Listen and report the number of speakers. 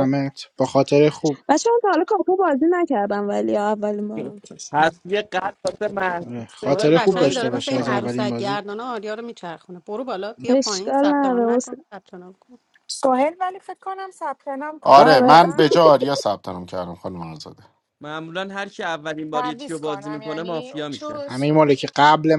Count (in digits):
6